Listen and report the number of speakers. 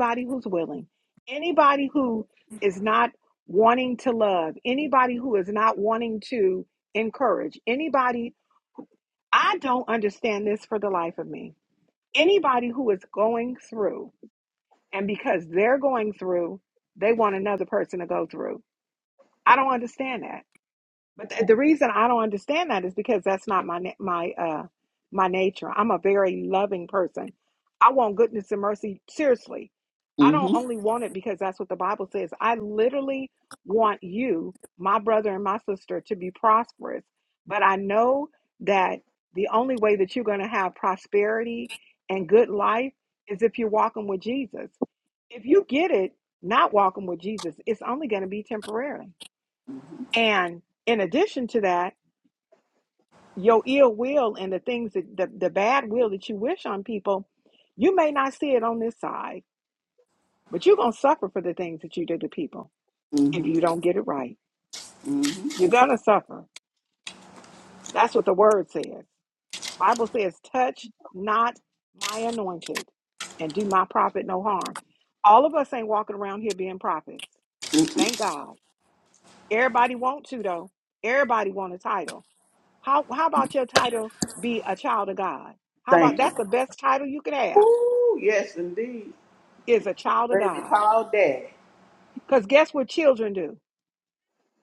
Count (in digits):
2